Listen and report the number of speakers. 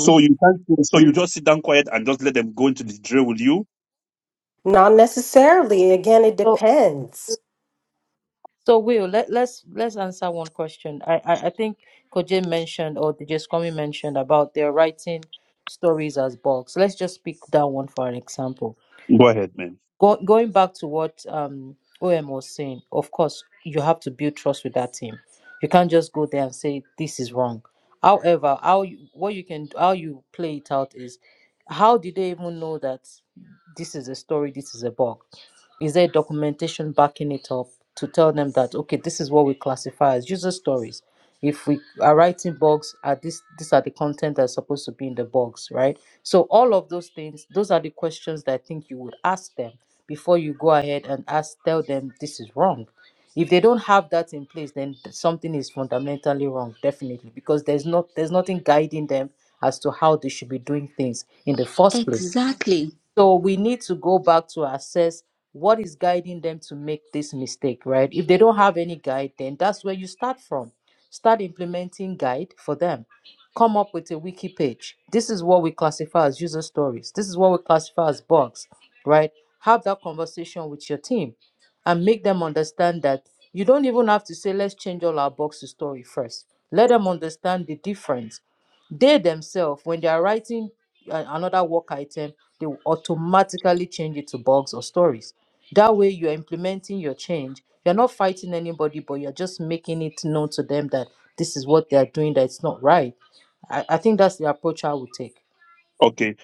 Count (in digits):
4